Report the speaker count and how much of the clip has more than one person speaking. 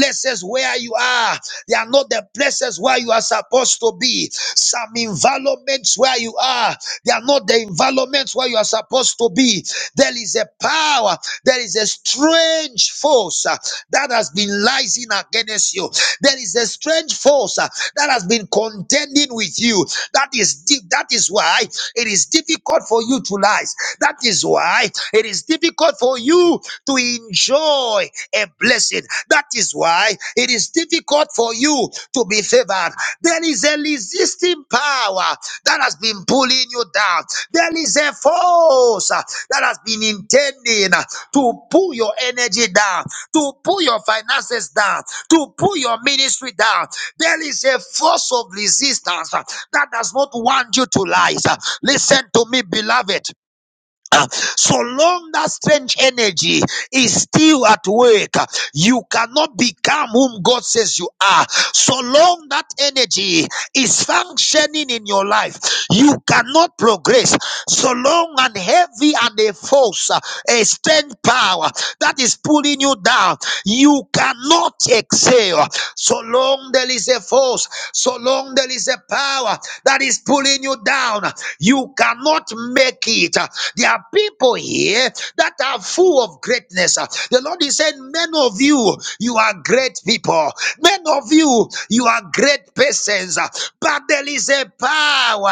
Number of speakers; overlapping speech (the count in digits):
1, no overlap